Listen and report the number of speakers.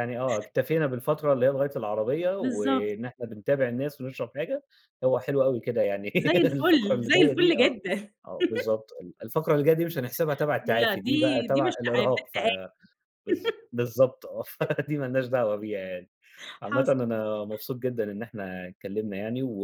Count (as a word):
two